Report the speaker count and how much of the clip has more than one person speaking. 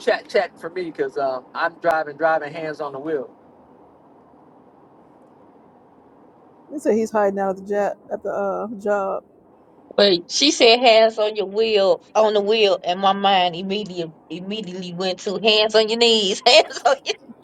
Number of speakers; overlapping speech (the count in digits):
3, no overlap